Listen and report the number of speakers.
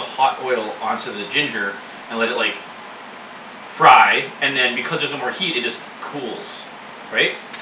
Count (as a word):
one